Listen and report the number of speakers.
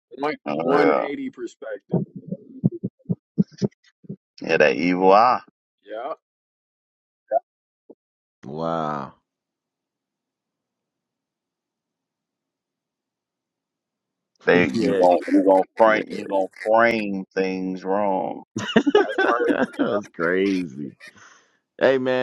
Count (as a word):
three